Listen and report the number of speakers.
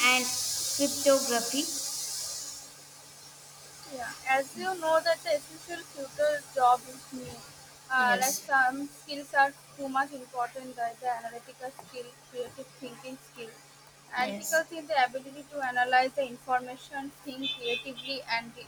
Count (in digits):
2